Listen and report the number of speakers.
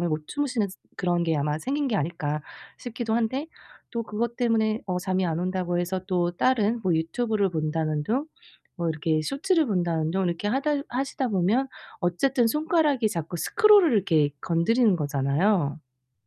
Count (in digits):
1